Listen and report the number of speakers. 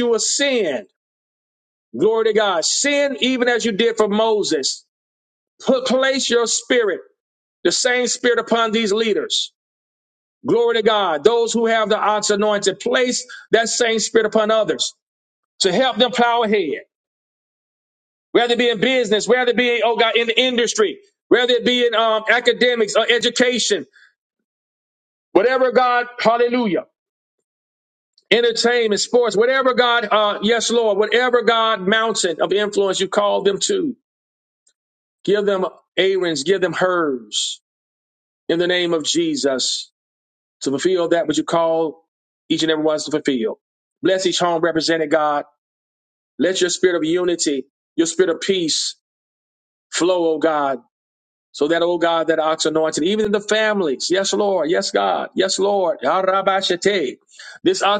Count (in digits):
1